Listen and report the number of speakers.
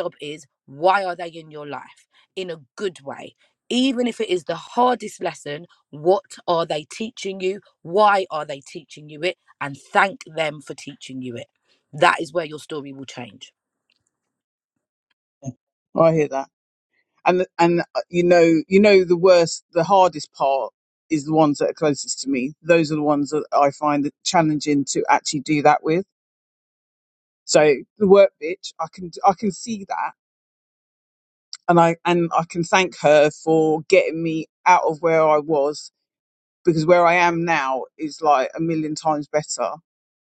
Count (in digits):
2